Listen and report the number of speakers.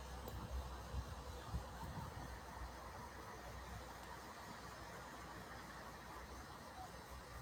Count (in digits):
0